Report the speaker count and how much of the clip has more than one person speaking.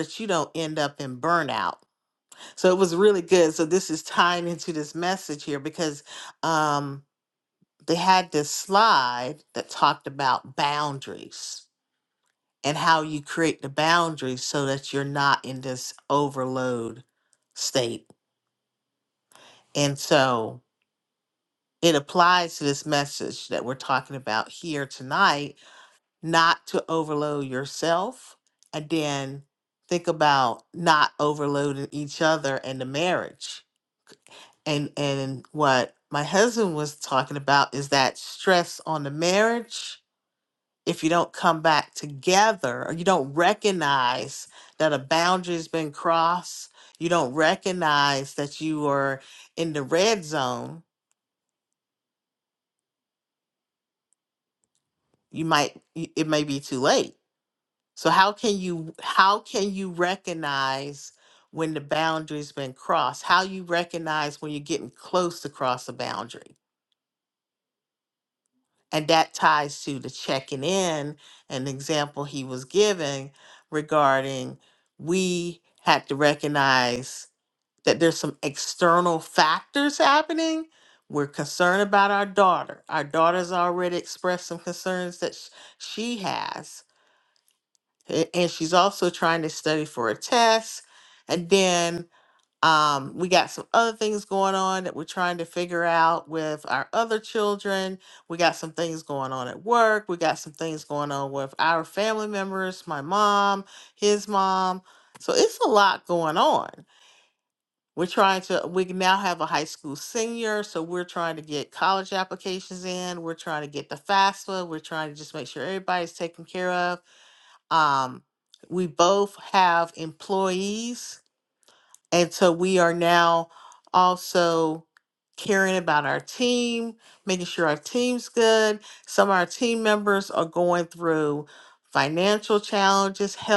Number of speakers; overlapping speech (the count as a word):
one, no overlap